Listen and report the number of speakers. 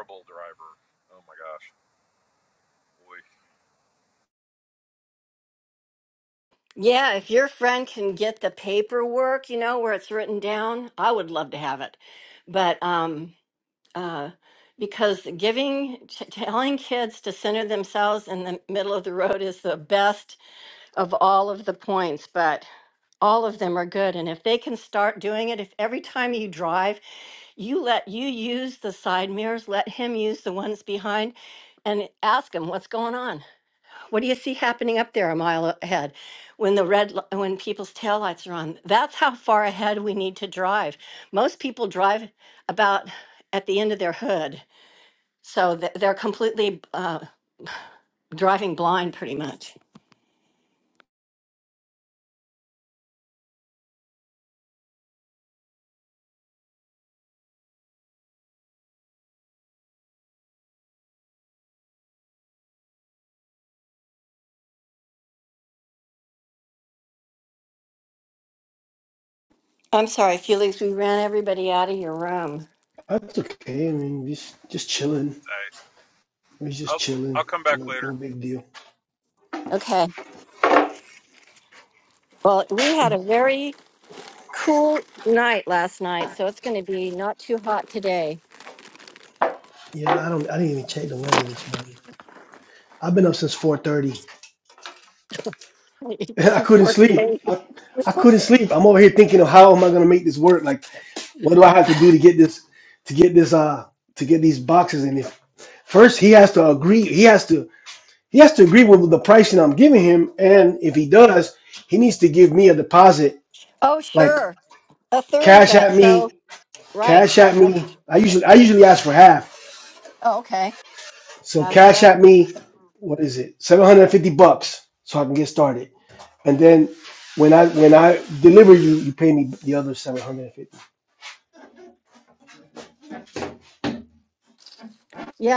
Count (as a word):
three